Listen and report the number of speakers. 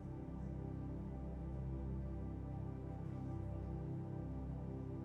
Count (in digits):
0